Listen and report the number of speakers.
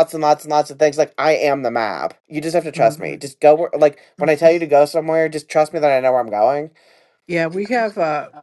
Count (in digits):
2